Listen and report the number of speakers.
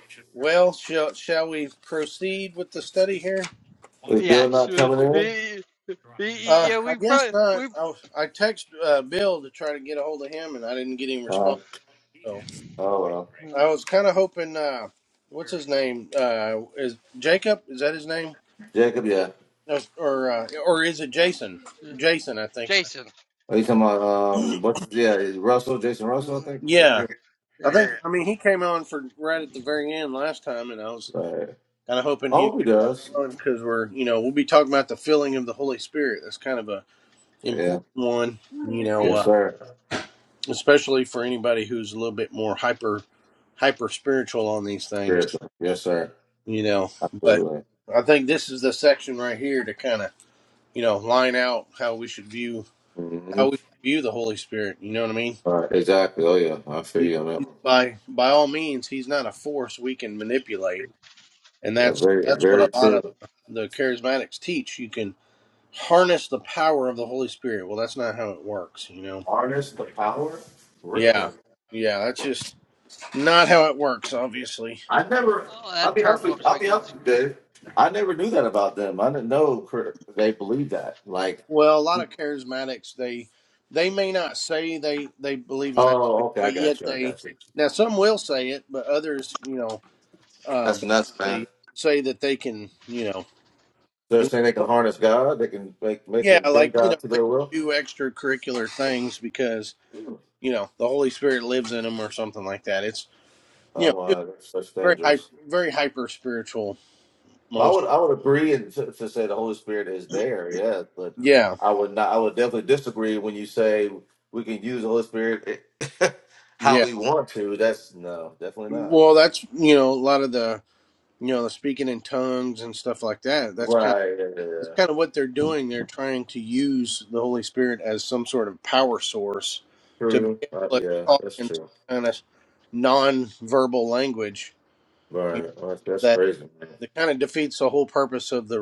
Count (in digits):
3